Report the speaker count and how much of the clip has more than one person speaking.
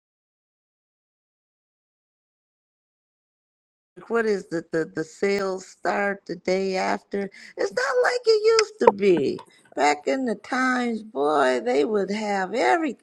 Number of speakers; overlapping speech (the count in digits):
1, no overlap